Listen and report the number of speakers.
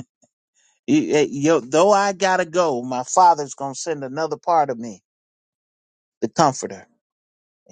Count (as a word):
one